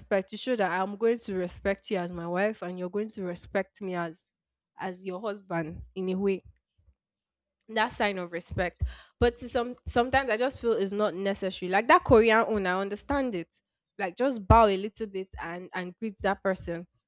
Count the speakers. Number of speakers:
1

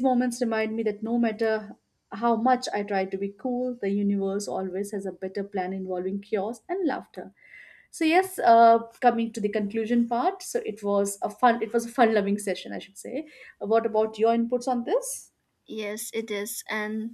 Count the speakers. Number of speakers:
2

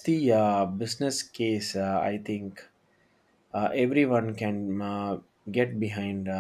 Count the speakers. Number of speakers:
1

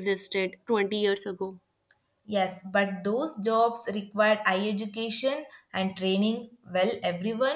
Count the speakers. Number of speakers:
2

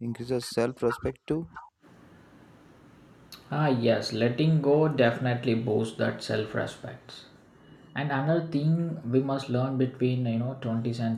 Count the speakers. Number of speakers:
2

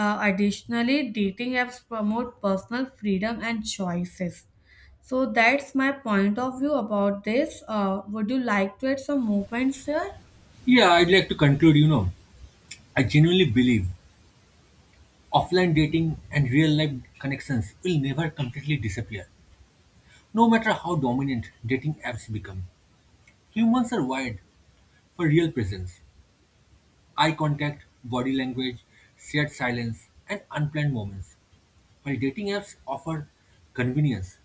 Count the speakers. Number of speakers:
2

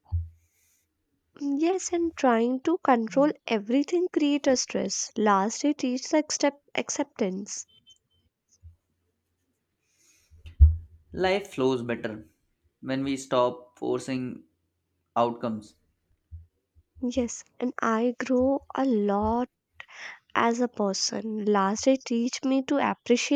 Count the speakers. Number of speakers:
2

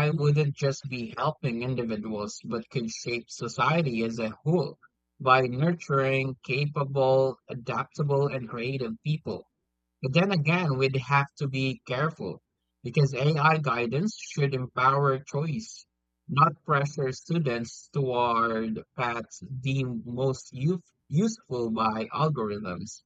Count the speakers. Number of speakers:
1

